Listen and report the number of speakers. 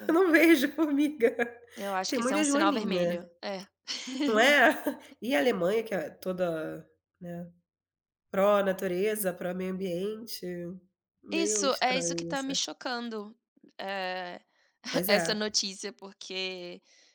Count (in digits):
2